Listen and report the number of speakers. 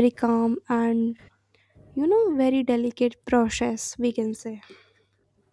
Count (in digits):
1